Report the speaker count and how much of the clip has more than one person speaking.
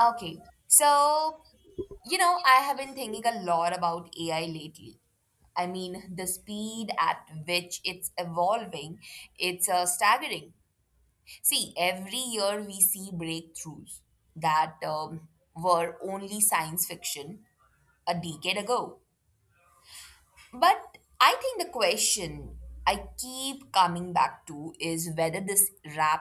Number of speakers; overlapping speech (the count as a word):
one, no overlap